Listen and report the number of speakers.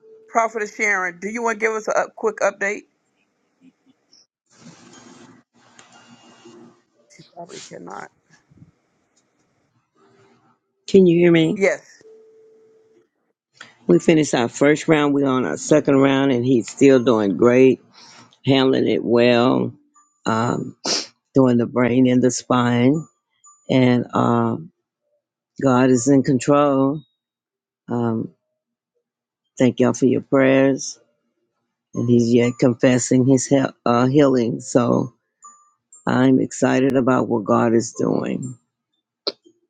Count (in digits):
2